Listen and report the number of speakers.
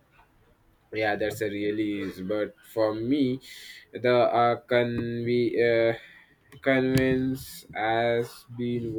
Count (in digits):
1